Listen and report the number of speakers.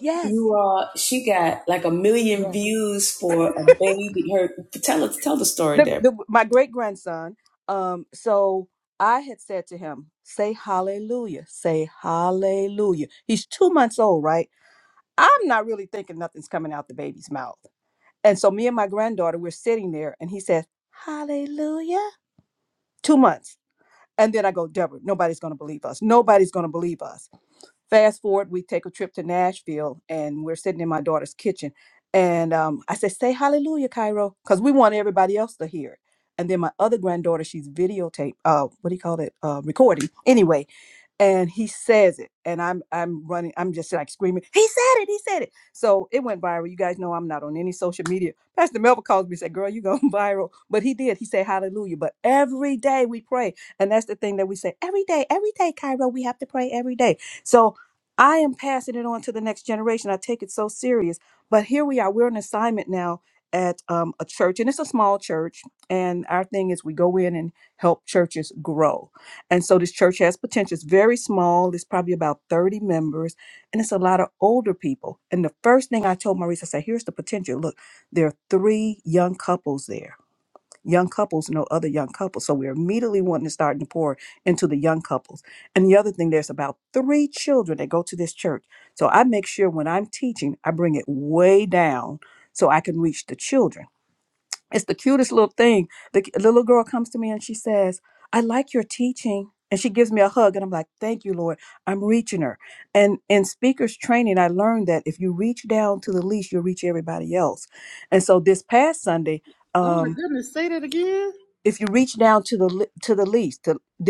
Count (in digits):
3